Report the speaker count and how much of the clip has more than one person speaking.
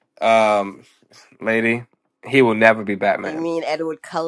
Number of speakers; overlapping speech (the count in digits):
2, about 7%